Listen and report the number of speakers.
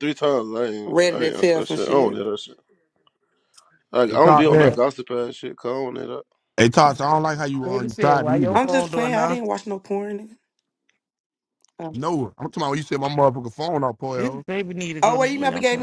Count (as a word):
four